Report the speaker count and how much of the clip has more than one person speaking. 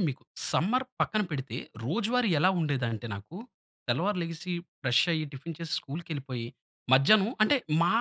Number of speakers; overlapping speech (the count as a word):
one, no overlap